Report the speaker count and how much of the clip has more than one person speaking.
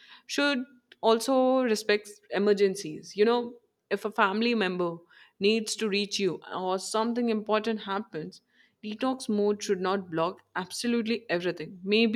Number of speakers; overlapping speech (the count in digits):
1, no overlap